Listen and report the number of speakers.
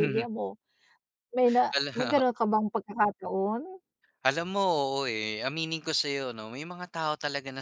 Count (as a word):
two